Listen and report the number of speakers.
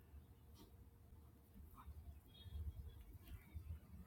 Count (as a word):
zero